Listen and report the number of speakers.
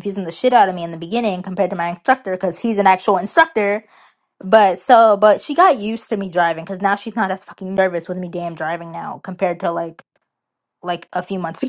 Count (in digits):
1